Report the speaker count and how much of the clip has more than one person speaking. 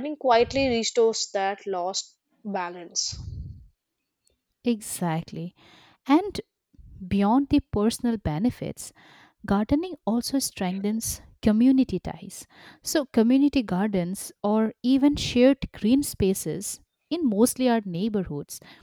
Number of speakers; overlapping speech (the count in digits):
2, no overlap